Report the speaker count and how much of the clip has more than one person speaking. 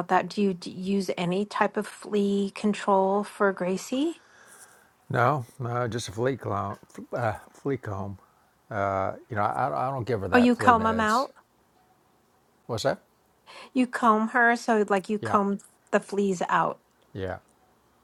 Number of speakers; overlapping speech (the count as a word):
two, about 6%